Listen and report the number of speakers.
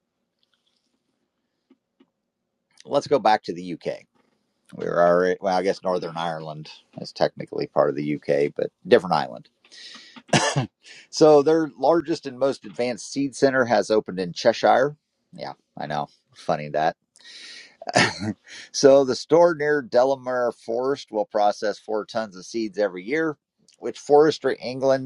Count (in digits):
1